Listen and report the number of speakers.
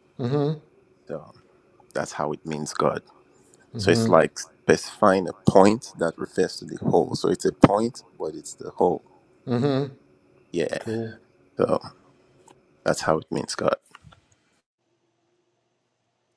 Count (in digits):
2